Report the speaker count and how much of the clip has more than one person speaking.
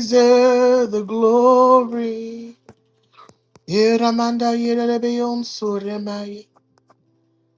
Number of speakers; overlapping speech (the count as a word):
one, no overlap